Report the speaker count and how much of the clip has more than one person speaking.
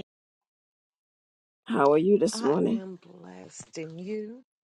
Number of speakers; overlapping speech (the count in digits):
2, about 10%